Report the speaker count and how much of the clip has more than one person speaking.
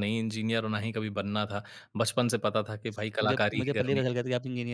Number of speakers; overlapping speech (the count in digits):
2, about 20%